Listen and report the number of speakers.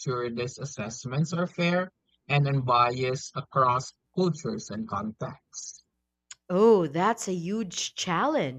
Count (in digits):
2